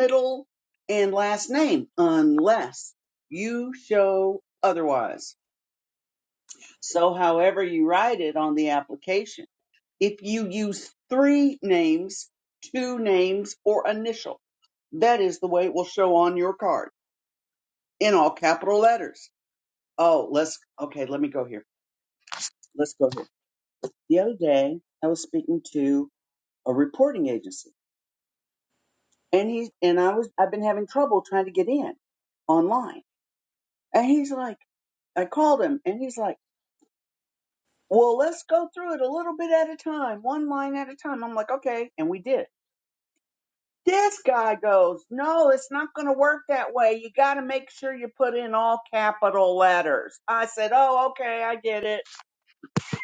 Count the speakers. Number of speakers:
1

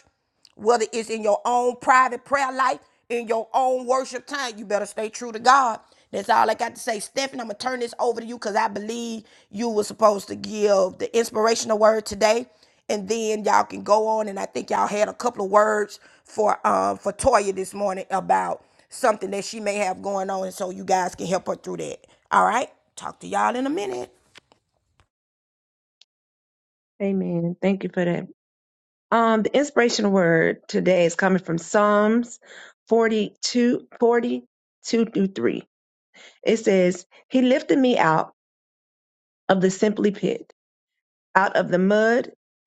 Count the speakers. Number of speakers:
2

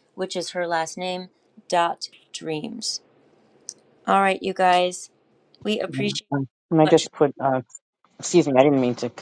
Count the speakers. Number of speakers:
2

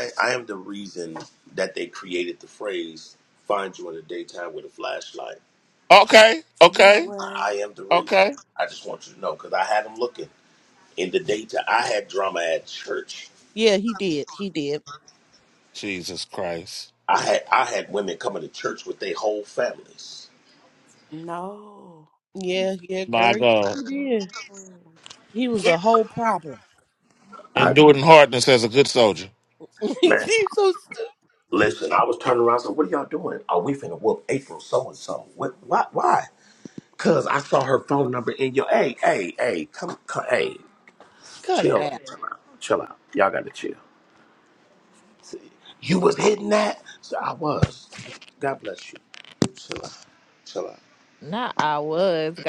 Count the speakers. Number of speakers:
5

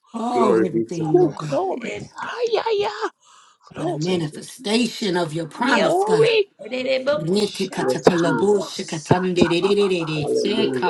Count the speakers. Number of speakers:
4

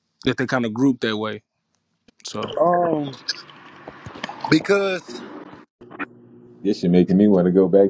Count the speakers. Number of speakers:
3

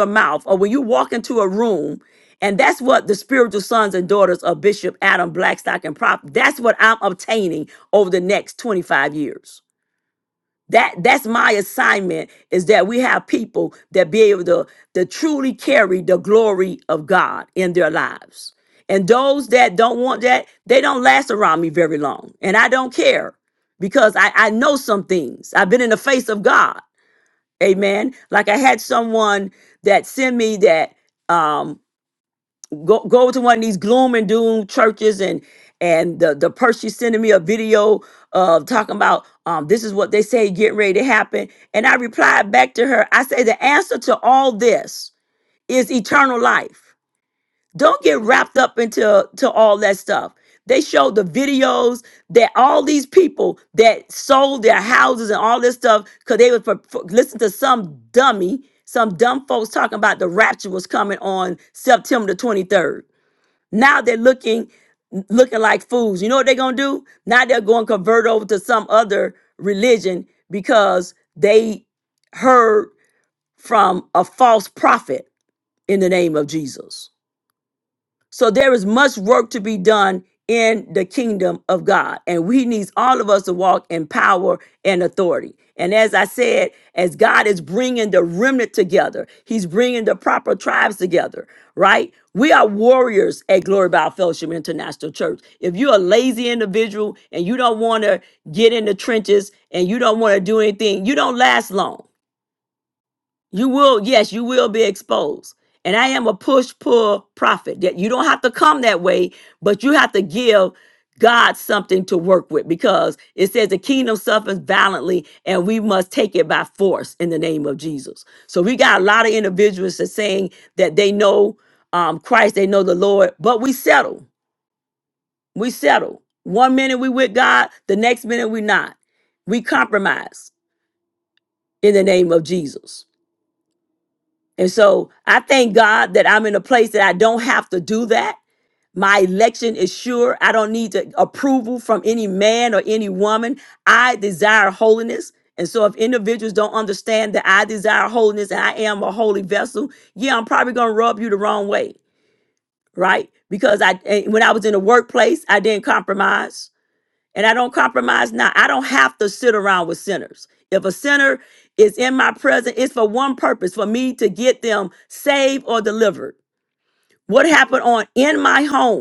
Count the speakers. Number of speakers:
1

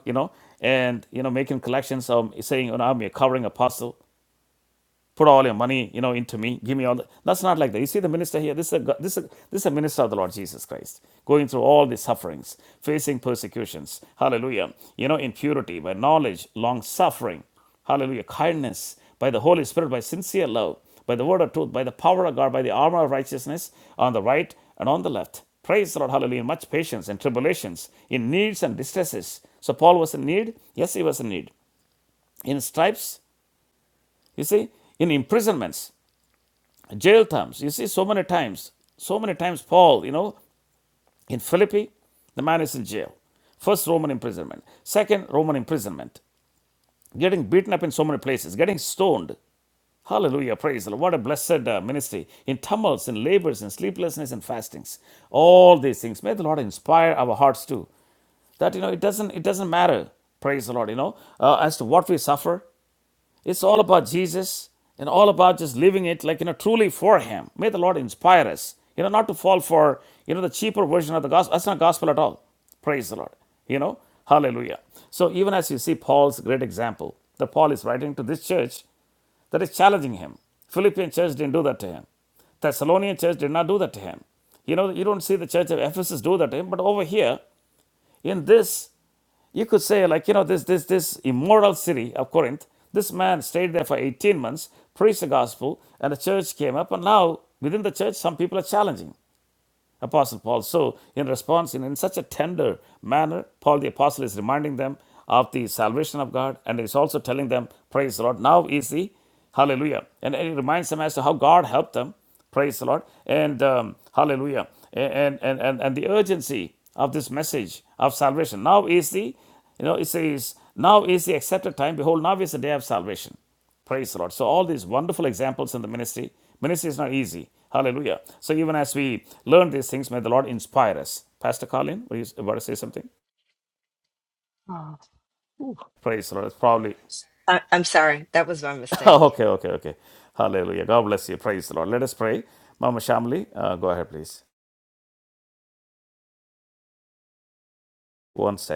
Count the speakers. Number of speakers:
2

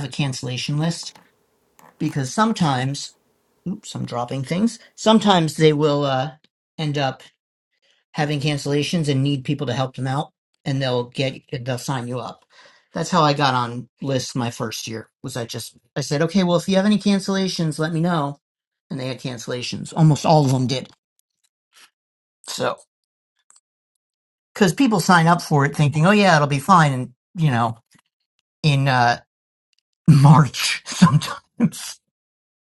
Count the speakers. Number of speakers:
1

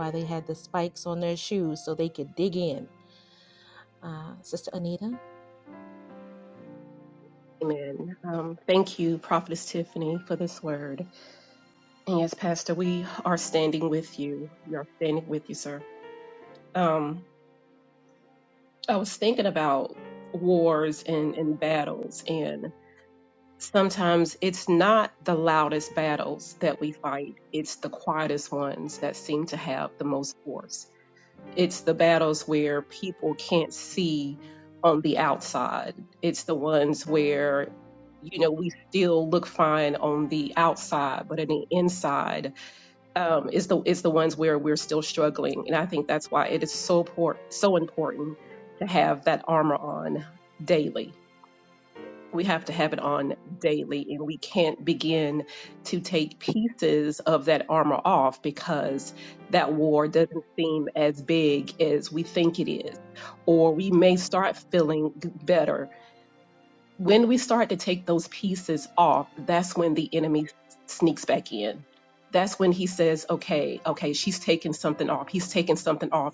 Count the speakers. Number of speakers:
2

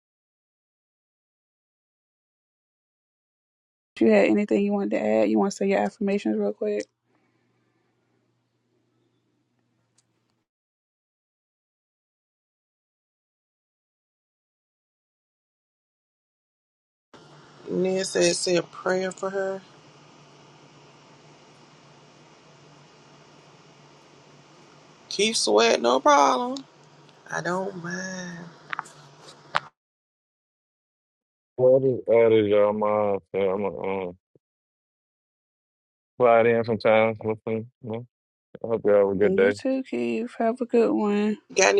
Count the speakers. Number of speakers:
3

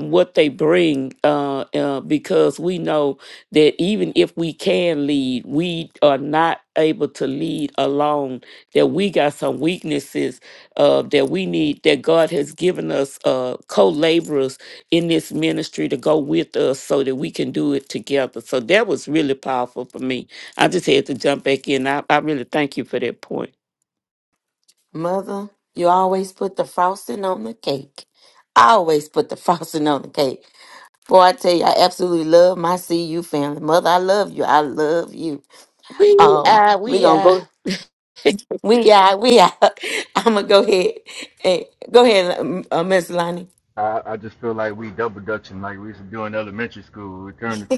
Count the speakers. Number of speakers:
3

